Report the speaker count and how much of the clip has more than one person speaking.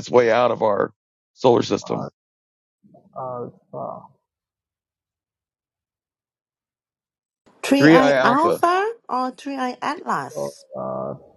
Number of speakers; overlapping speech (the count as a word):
three, about 7%